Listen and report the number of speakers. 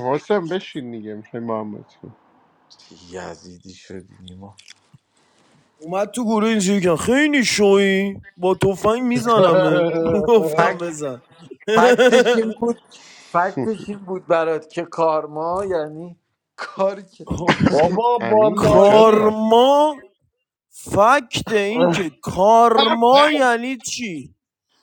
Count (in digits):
4